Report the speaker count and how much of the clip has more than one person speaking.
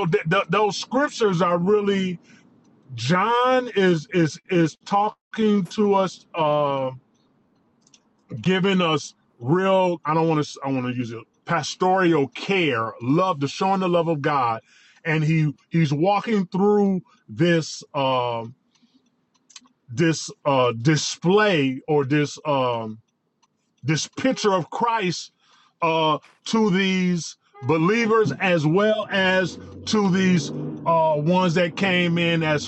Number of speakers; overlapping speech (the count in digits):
1, no overlap